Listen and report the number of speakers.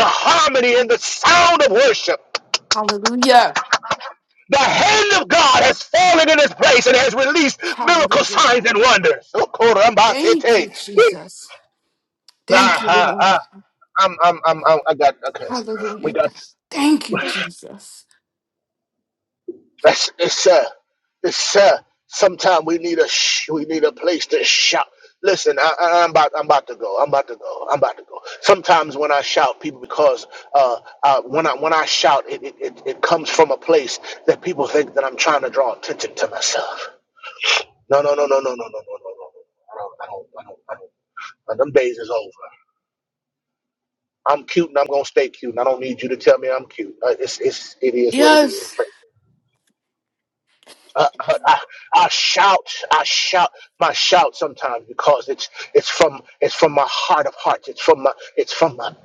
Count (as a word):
two